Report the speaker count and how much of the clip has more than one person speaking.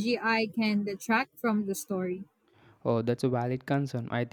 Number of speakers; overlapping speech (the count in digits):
2, no overlap